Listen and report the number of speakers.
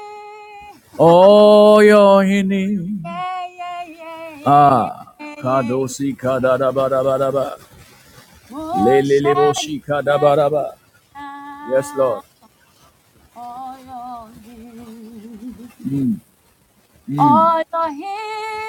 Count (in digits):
2